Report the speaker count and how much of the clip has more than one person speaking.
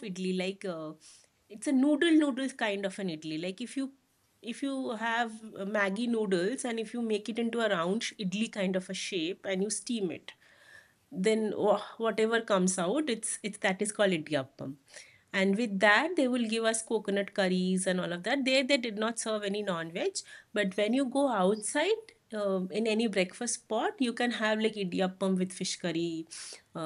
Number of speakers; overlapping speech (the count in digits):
1, no overlap